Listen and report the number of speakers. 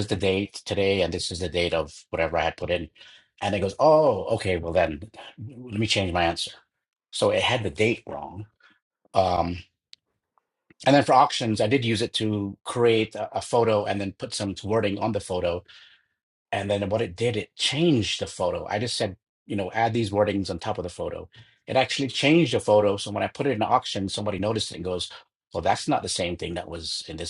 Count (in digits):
1